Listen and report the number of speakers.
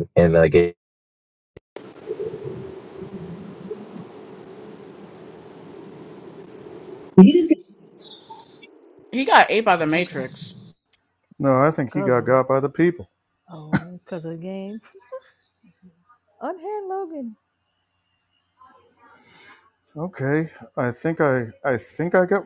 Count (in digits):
4